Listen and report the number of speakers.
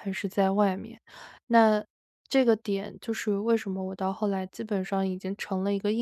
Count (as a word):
one